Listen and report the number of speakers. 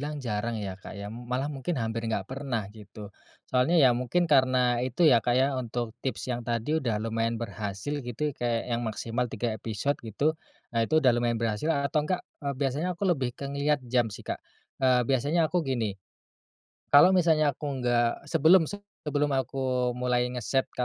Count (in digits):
1